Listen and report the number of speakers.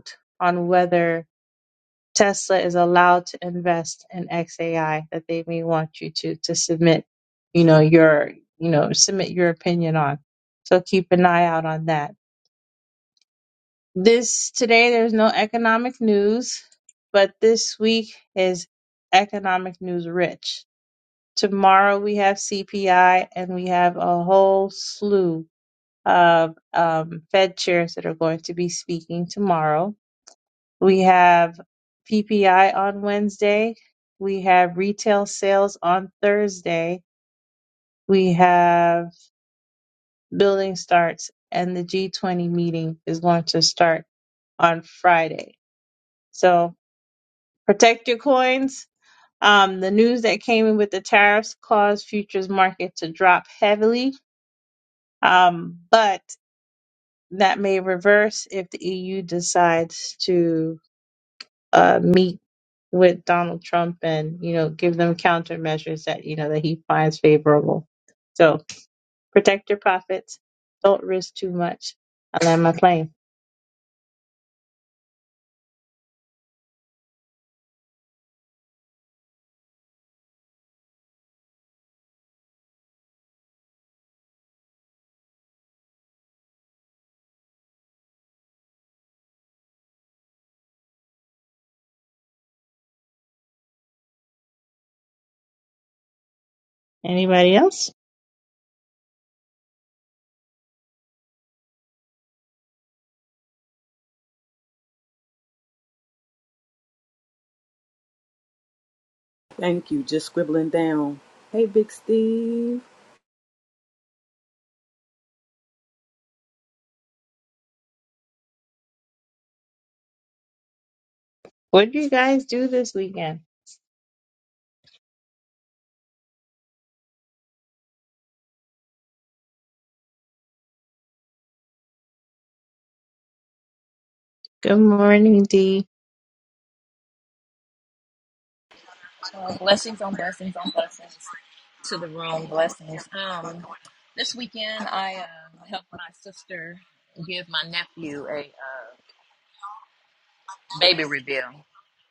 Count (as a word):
three